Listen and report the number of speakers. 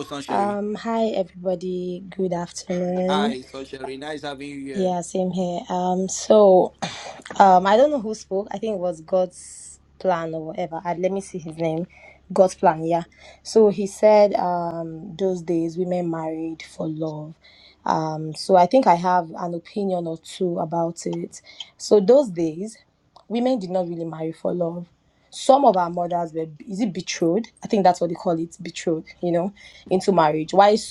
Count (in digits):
2